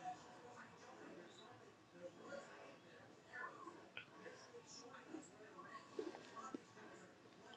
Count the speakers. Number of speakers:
0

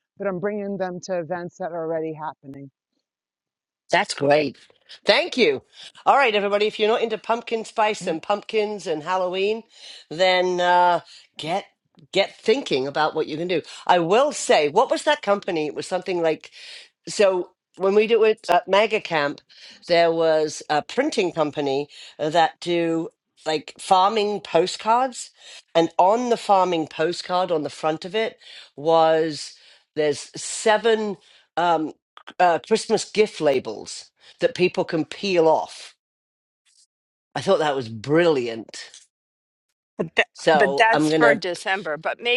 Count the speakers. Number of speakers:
3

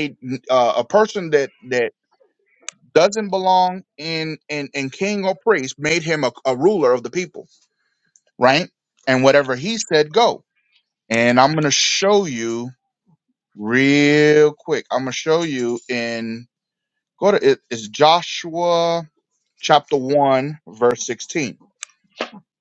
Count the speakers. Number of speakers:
1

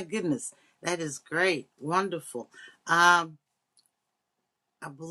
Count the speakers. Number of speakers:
1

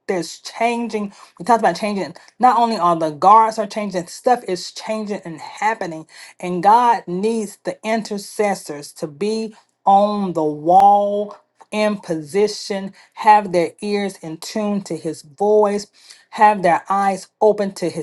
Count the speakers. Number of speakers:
1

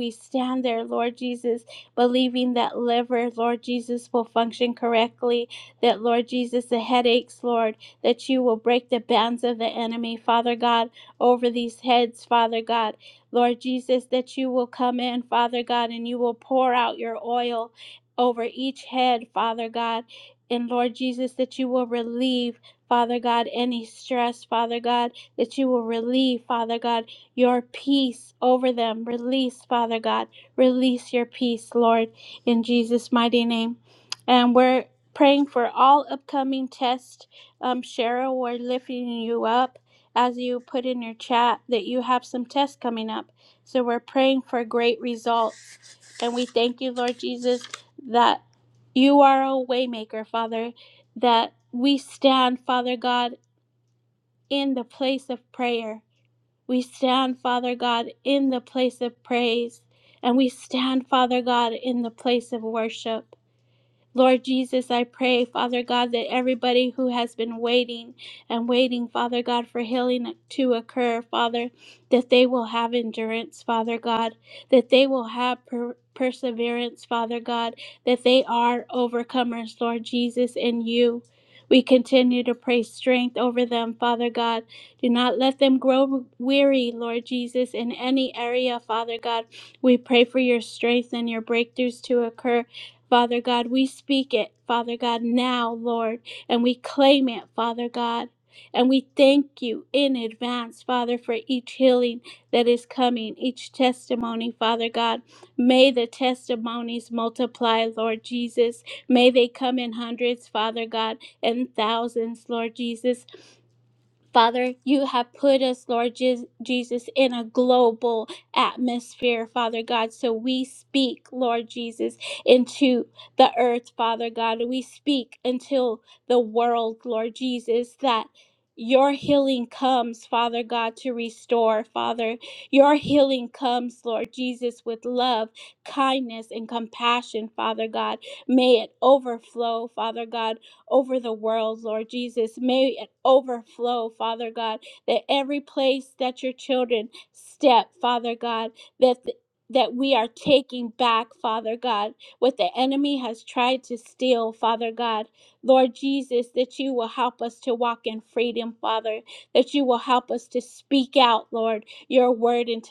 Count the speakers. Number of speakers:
1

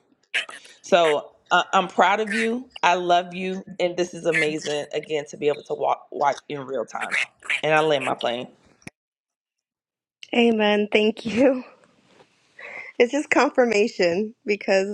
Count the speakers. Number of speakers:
2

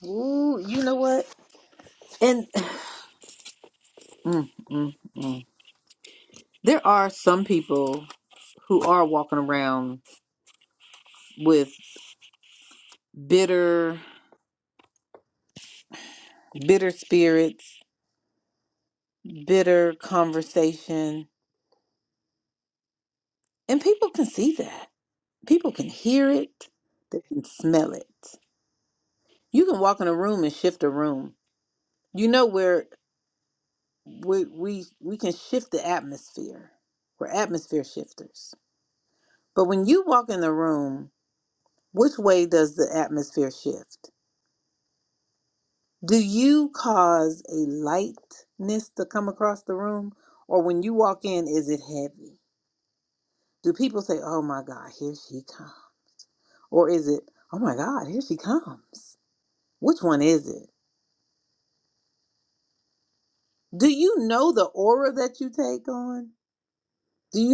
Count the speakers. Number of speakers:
1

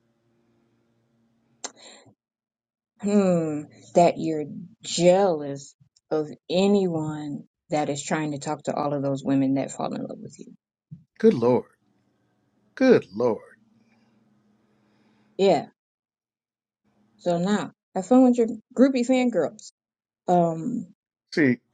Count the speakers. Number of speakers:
2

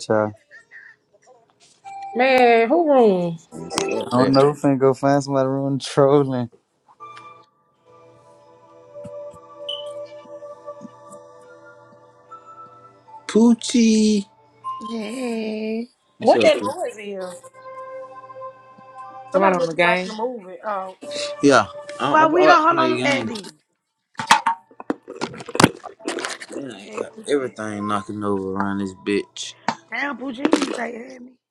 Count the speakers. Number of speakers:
5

